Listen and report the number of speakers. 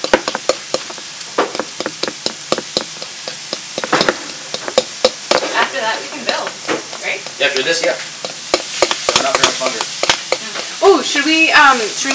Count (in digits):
3